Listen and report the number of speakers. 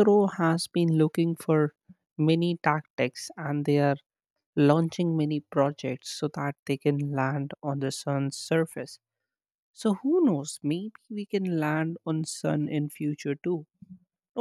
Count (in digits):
1